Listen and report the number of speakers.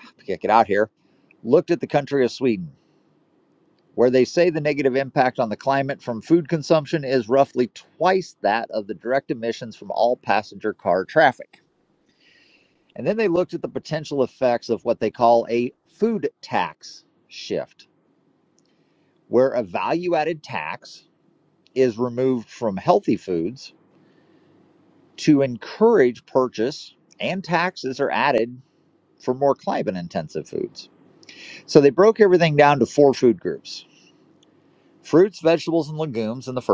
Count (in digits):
1